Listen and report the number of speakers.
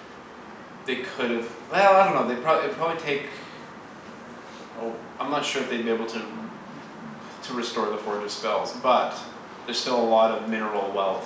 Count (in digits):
1